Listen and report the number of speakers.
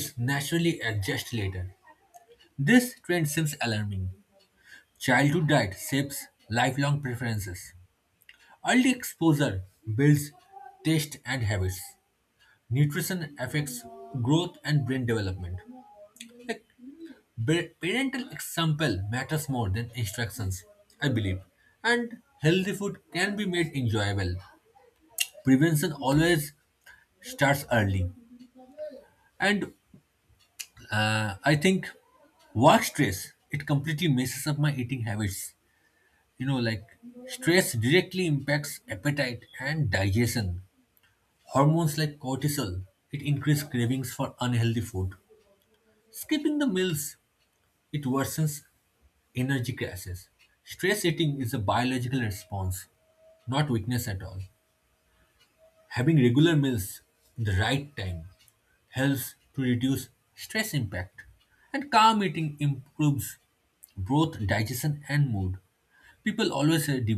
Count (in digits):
1